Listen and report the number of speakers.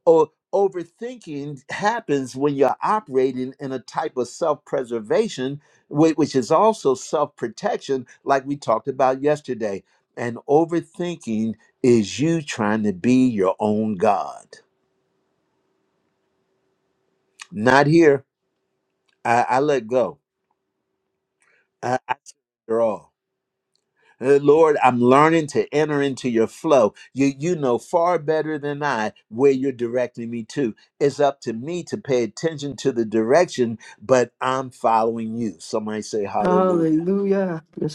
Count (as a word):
two